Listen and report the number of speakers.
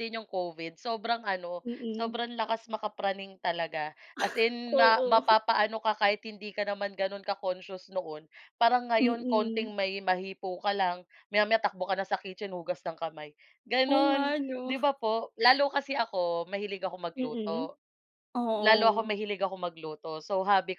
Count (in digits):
2